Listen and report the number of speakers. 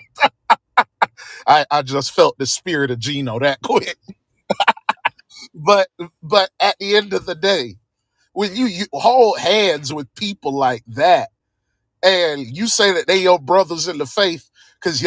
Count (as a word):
one